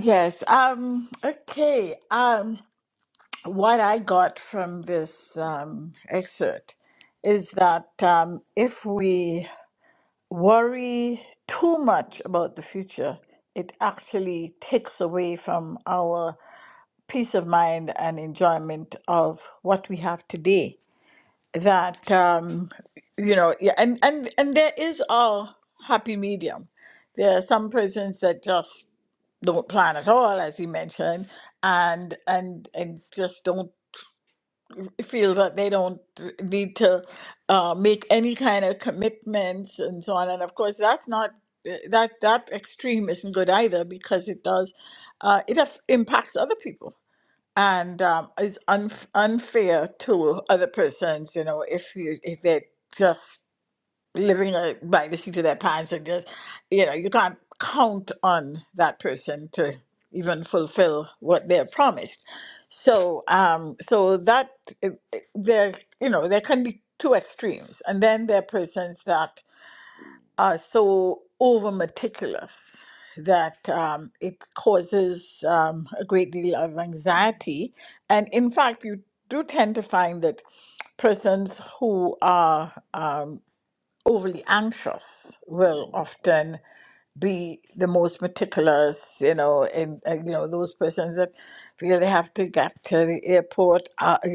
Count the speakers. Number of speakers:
one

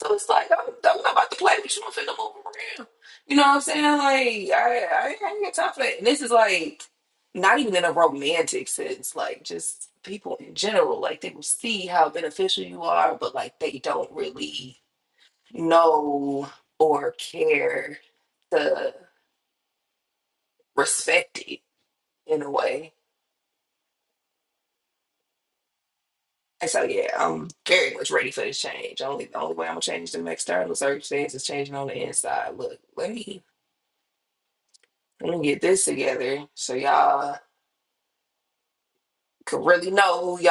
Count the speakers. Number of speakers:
one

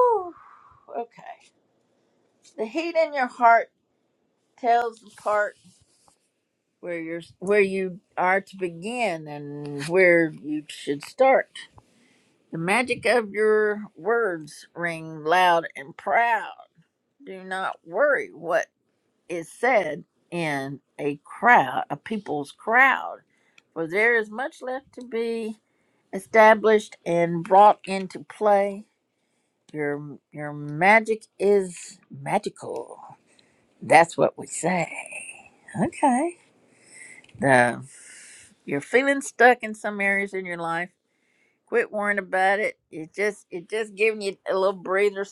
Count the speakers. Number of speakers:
one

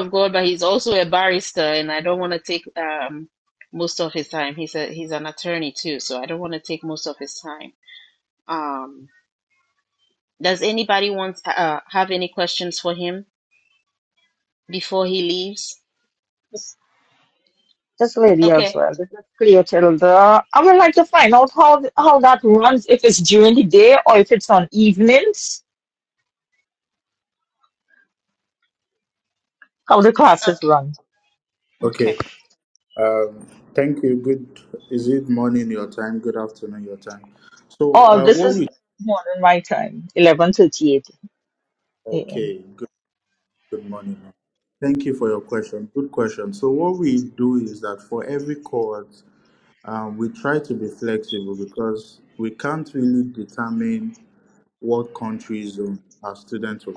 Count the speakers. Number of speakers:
three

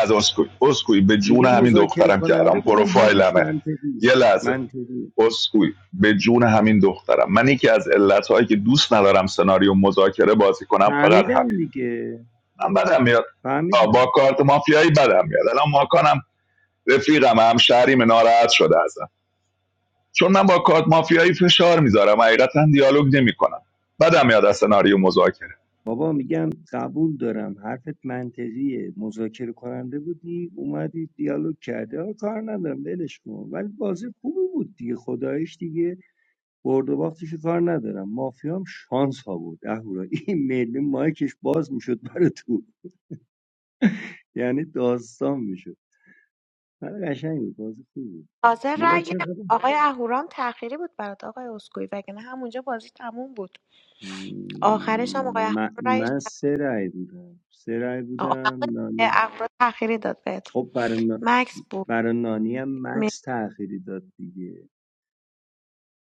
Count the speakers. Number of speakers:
three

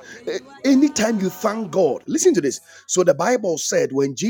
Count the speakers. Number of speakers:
one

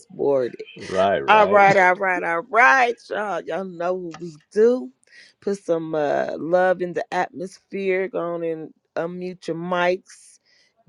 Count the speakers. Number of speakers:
two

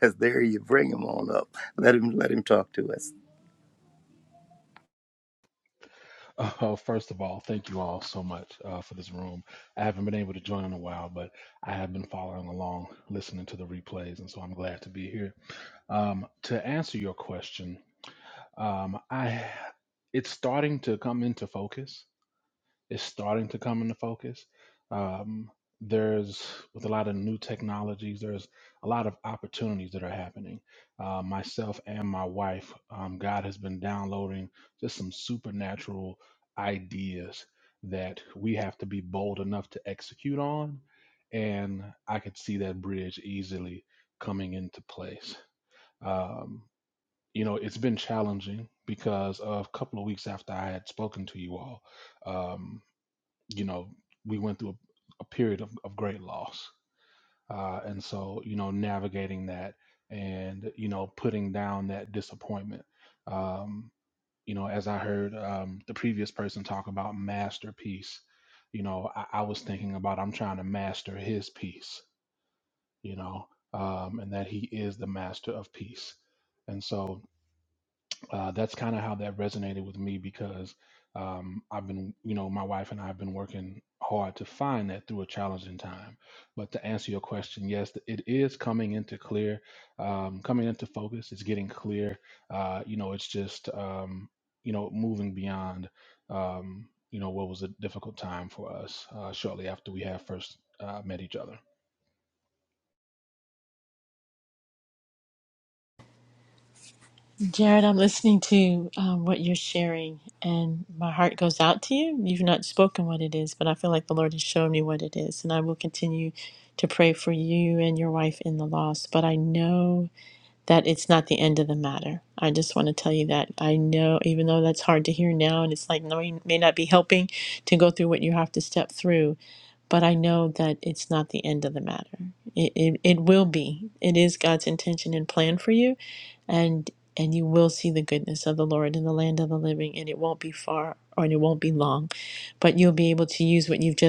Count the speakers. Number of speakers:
three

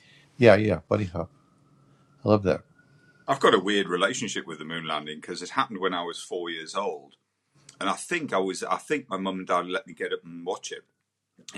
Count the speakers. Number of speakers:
two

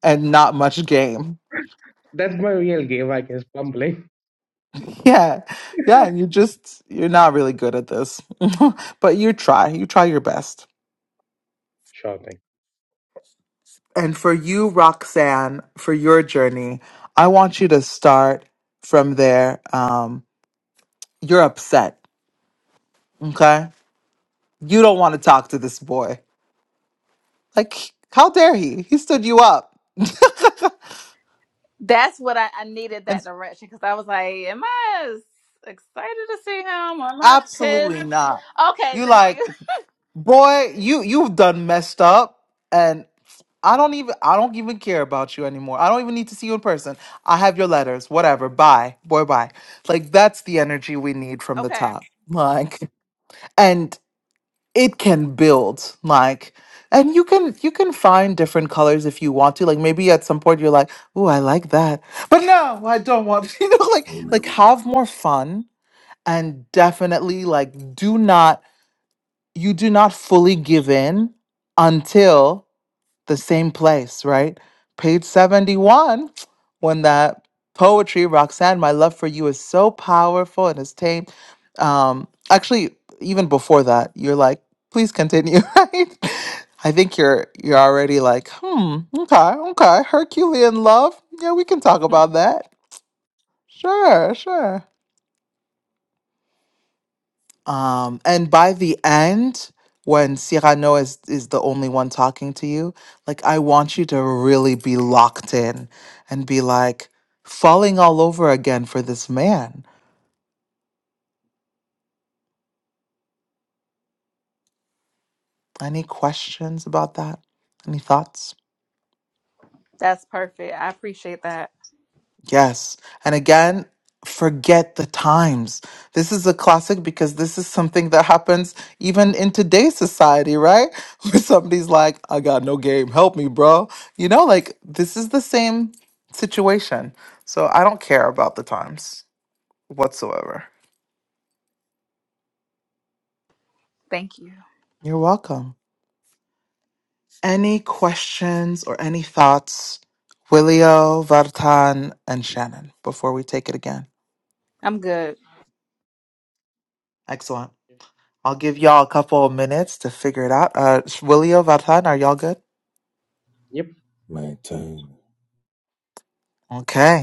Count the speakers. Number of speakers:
four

